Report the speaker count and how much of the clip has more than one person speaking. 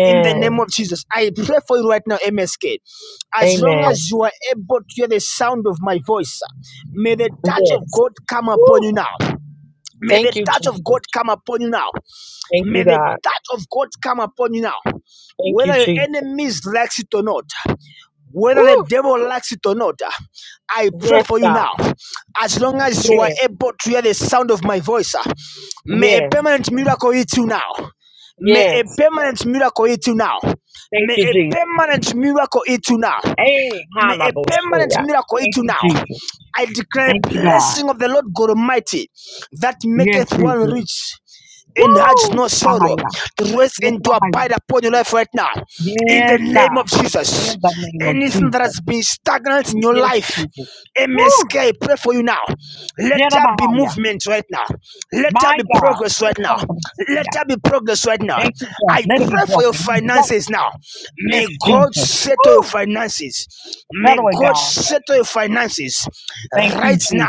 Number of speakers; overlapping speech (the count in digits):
2, about 30%